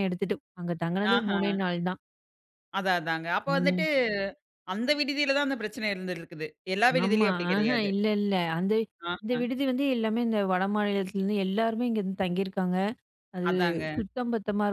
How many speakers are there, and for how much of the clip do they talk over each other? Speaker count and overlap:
two, about 14%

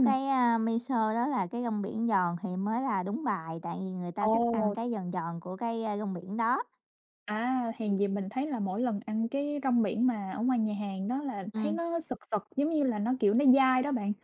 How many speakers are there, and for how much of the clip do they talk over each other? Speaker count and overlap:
two, about 7%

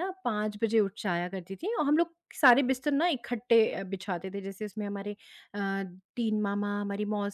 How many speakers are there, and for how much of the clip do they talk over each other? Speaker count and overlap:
one, no overlap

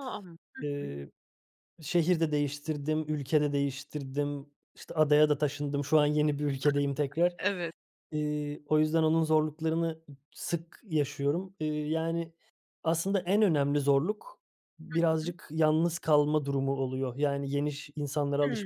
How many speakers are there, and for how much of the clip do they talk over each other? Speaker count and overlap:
two, about 4%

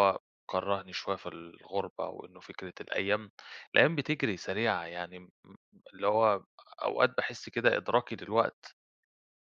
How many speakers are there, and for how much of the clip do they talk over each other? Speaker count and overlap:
one, no overlap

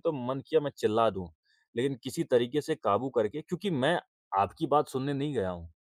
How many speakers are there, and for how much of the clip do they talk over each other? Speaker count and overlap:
one, no overlap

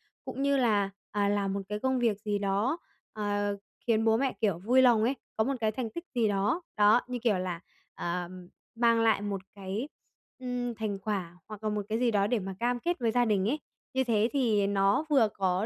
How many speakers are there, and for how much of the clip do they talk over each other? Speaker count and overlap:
one, no overlap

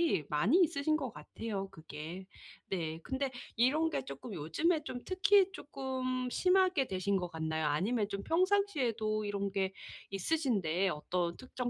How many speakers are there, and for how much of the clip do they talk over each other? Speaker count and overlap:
one, no overlap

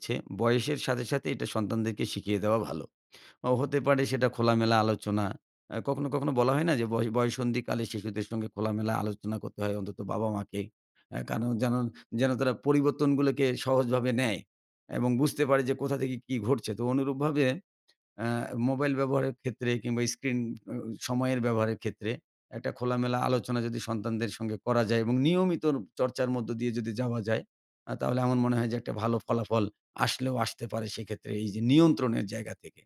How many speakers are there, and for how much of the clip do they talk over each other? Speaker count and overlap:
one, no overlap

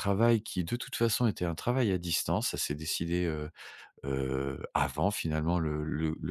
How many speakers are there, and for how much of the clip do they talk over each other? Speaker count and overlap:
one, no overlap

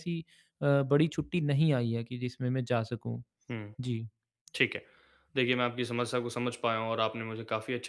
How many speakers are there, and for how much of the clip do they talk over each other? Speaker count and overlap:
two, no overlap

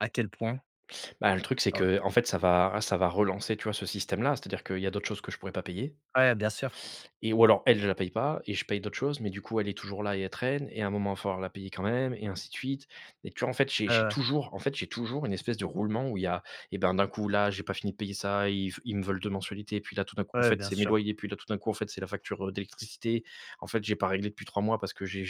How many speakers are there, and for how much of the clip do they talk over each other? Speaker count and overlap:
two, about 4%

